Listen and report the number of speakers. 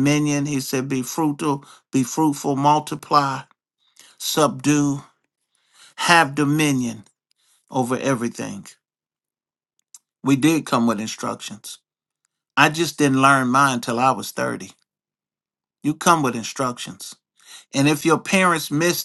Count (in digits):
1